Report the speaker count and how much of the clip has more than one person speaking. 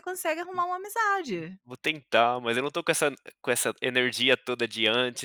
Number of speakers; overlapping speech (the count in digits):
2, no overlap